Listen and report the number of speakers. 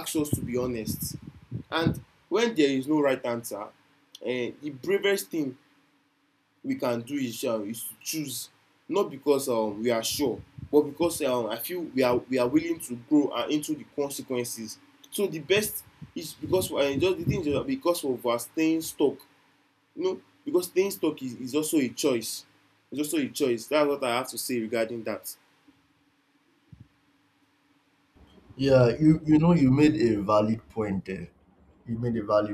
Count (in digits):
2